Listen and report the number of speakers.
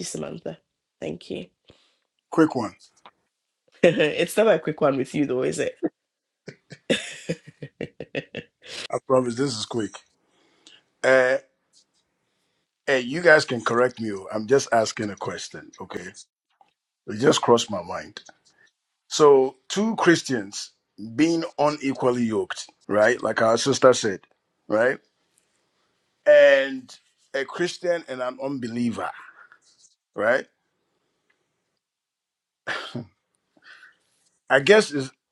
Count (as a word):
two